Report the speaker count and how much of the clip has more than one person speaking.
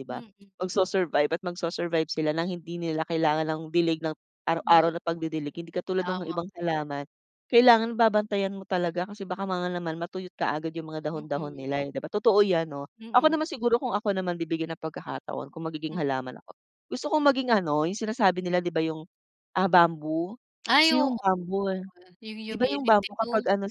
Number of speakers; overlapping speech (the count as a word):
two, about 12%